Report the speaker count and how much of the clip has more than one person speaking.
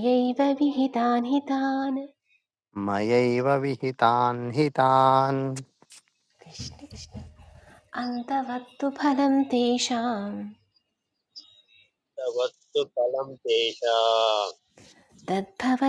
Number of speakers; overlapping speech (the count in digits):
3, no overlap